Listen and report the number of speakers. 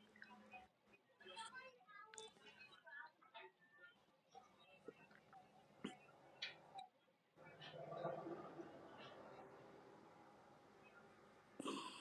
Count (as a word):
zero